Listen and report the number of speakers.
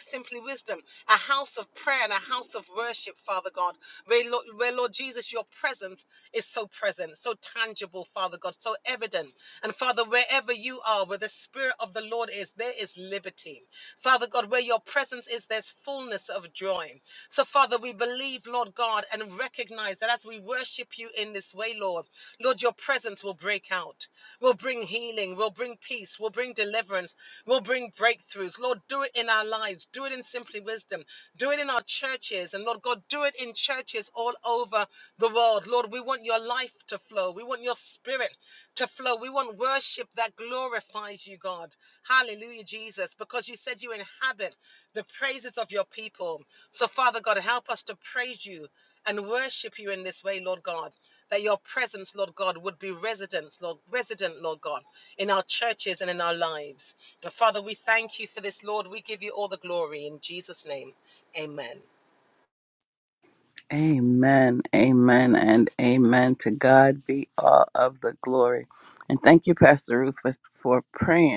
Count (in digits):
2